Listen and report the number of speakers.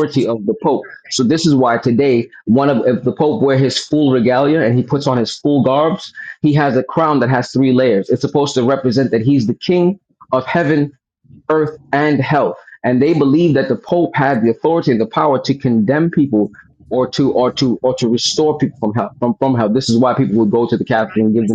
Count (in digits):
1